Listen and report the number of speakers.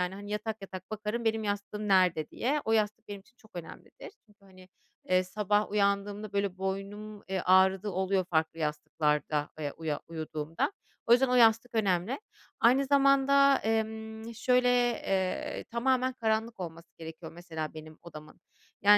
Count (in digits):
1